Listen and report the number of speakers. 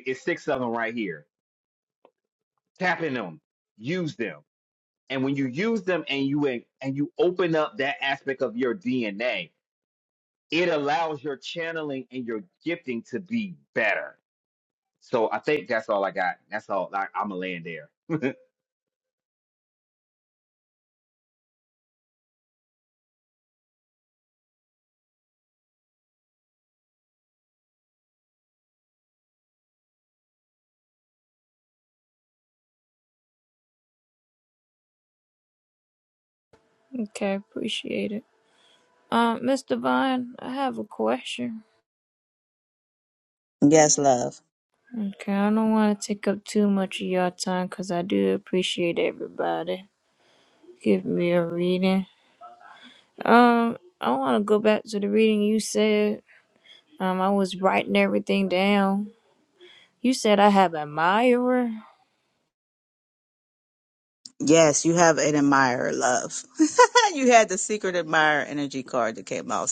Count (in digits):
3